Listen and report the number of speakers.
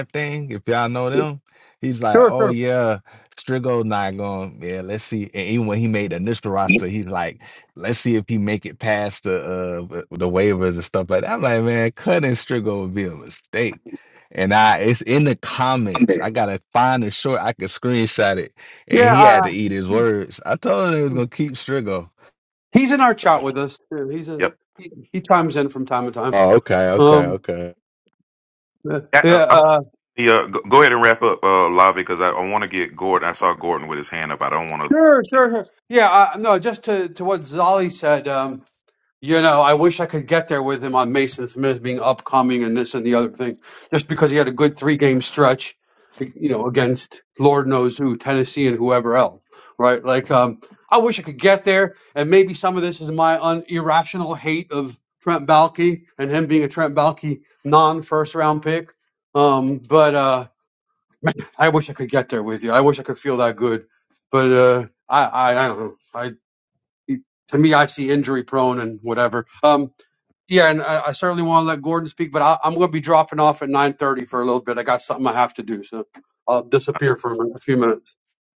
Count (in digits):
3